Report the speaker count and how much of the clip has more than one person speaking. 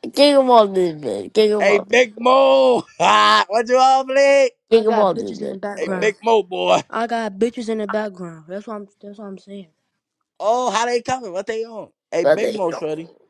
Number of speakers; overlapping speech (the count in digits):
3, about 18%